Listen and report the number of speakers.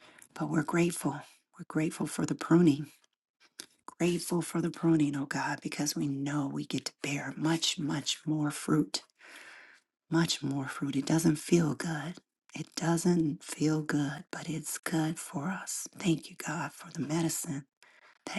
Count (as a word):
one